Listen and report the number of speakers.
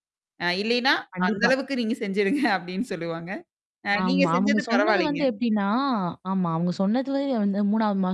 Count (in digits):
2